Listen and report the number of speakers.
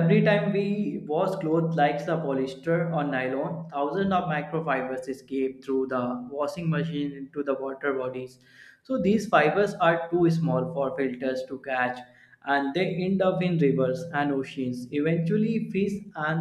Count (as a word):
one